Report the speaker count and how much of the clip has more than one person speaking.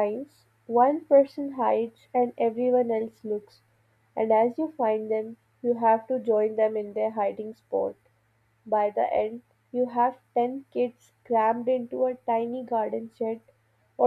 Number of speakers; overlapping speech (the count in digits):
1, no overlap